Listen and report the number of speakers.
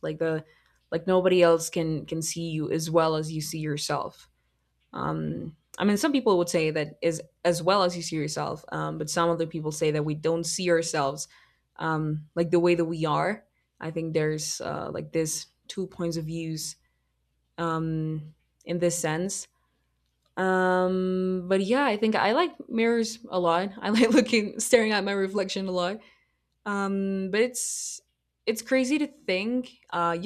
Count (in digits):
1